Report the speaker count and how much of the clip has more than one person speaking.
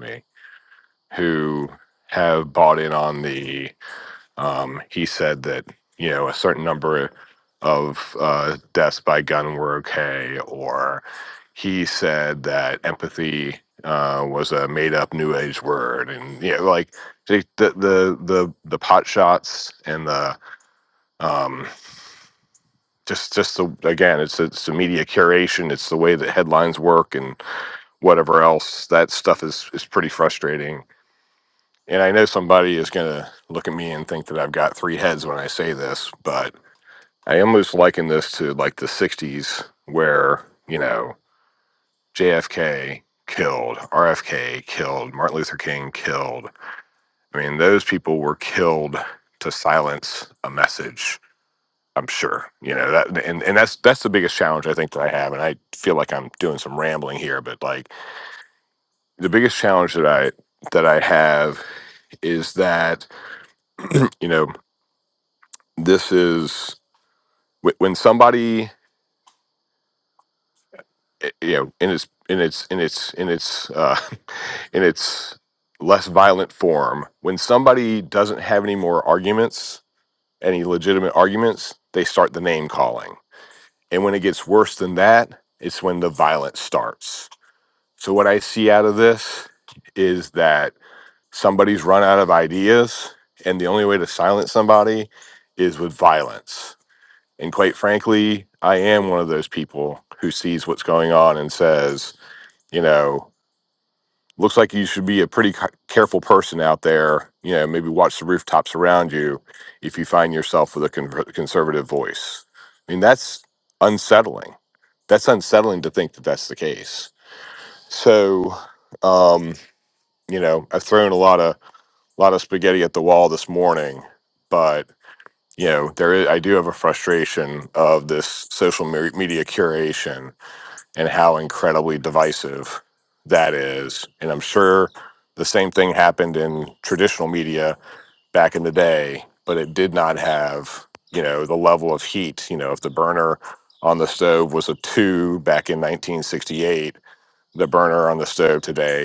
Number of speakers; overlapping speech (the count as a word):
one, no overlap